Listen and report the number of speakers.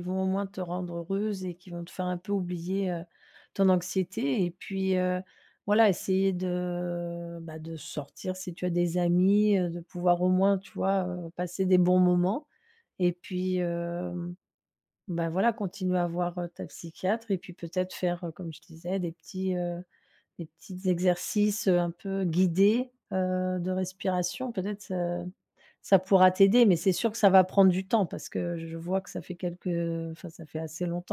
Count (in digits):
1